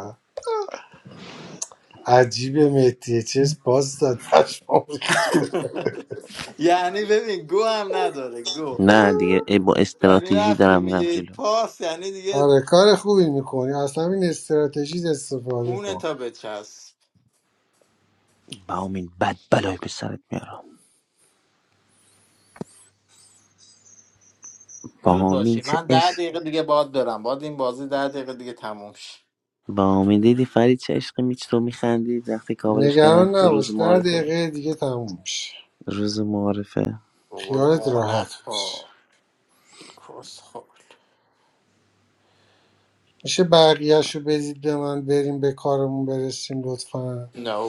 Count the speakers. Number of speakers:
3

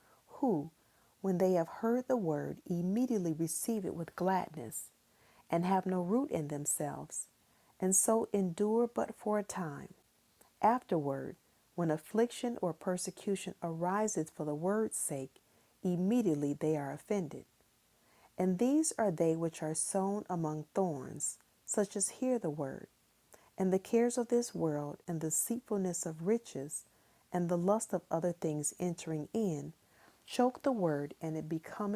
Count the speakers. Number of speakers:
1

